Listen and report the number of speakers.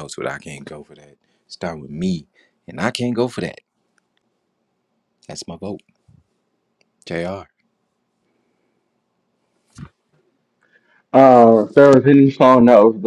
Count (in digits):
2